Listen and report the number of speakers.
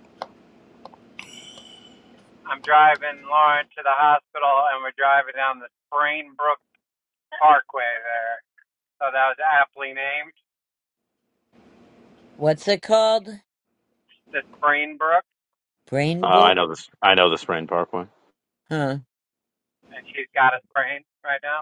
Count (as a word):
three